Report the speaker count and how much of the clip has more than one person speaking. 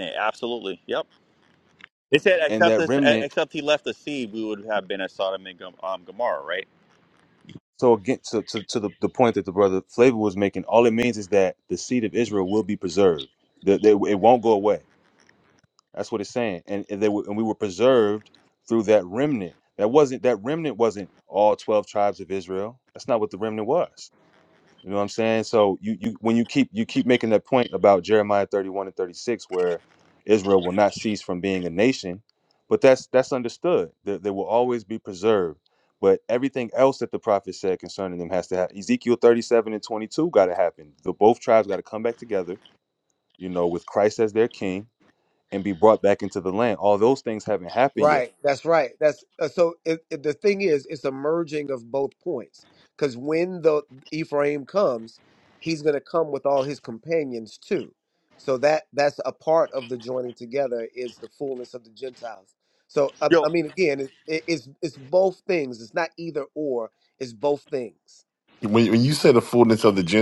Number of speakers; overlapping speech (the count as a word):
four, about 2%